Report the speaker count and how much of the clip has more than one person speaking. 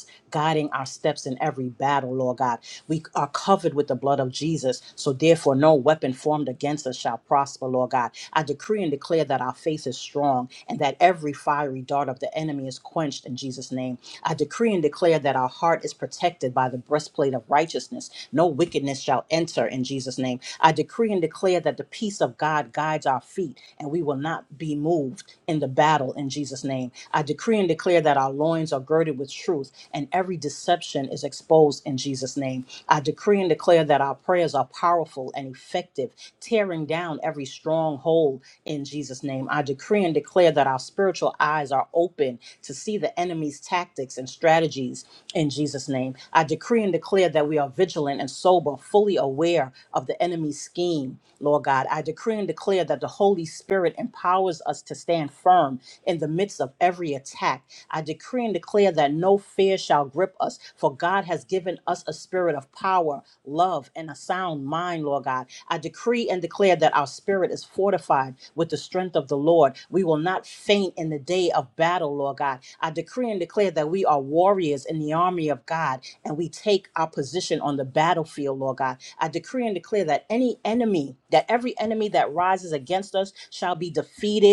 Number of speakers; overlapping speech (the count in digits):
1, no overlap